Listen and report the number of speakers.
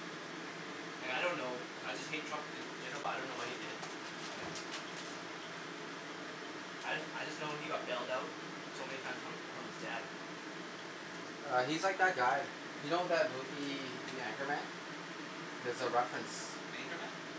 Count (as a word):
two